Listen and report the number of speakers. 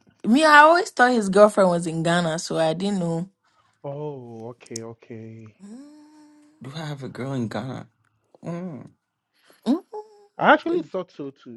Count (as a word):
three